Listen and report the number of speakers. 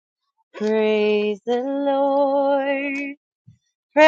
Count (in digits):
1